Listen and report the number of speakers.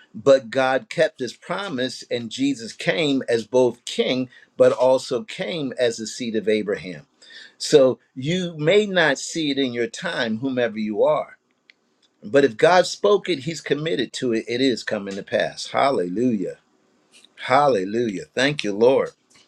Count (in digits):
1